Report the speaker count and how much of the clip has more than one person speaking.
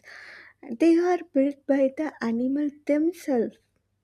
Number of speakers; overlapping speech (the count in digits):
1, no overlap